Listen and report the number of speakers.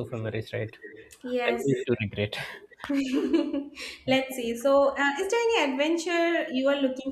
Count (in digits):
2